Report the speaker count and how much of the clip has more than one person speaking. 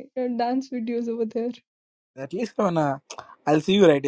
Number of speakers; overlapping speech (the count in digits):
2, no overlap